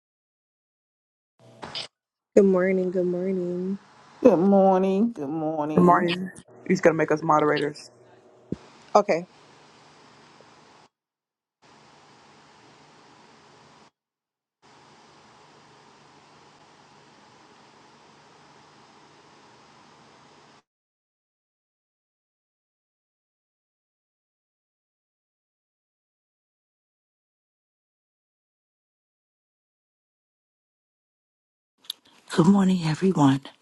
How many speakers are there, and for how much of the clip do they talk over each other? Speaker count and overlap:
four, about 1%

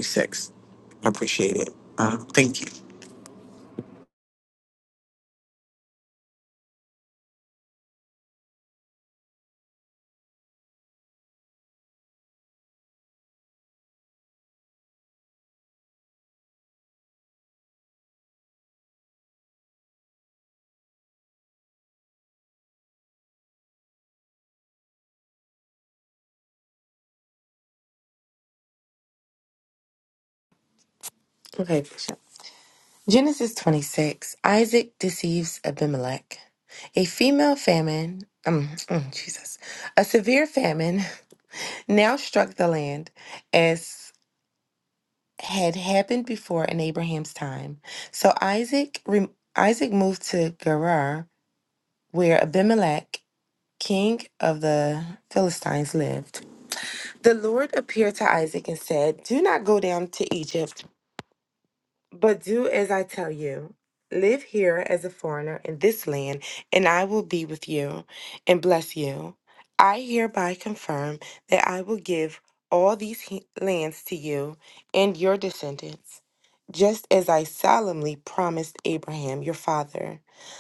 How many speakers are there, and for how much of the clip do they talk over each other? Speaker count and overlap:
two, no overlap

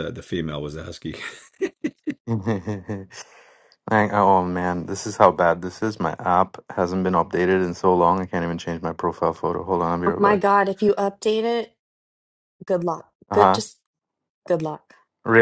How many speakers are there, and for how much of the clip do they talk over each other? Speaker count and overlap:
three, about 4%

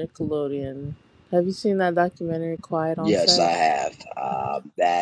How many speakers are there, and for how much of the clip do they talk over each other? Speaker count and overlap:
two, about 10%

